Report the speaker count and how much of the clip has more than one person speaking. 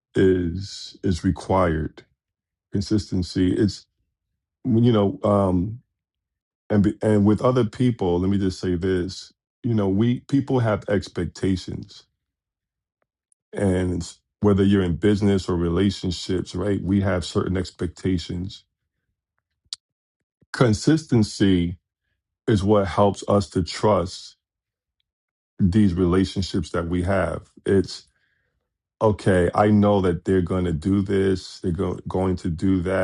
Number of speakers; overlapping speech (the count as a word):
one, no overlap